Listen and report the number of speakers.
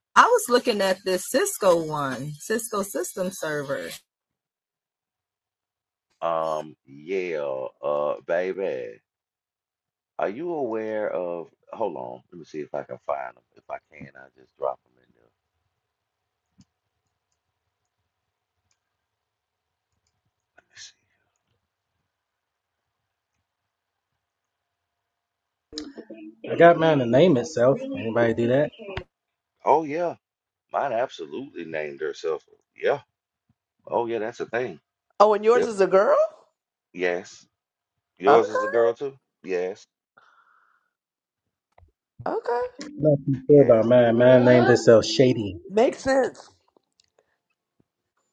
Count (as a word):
four